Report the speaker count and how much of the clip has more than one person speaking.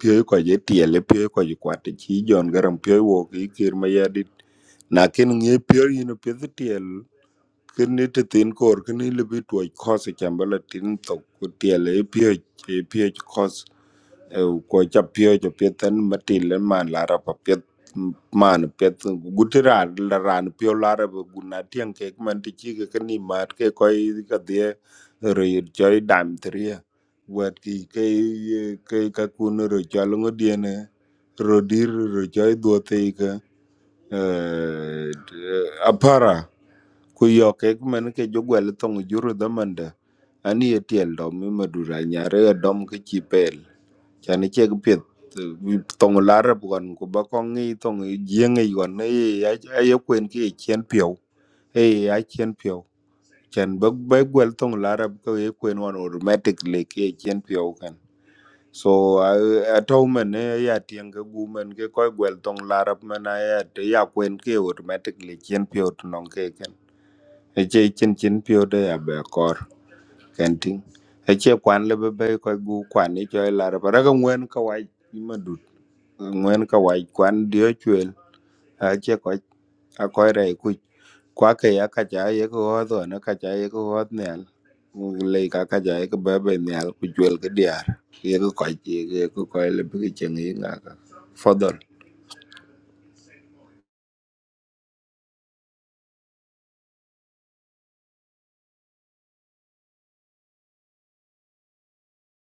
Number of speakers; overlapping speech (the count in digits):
1, no overlap